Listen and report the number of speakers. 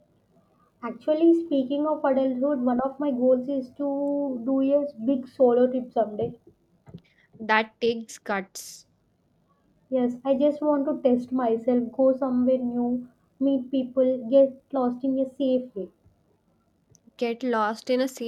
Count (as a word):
two